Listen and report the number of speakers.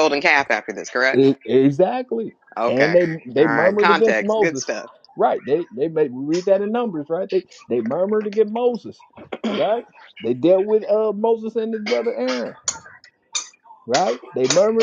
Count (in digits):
2